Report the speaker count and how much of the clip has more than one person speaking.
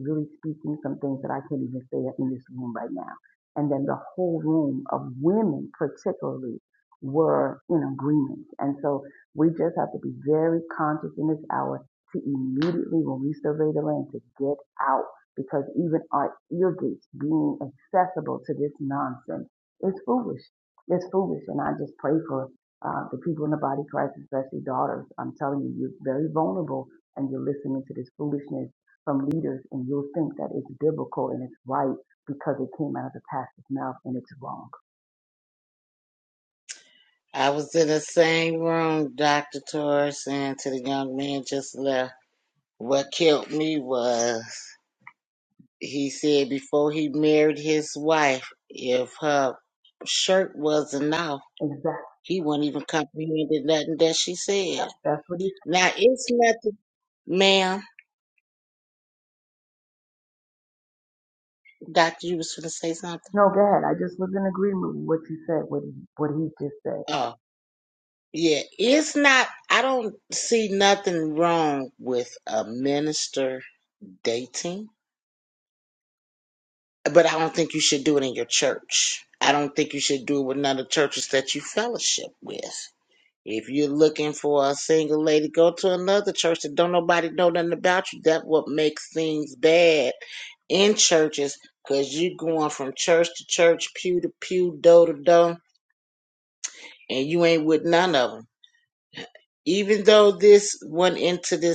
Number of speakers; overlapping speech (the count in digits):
2, under 1%